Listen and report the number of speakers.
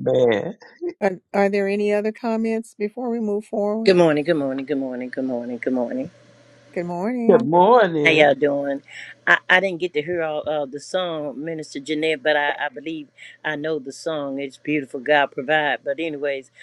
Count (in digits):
3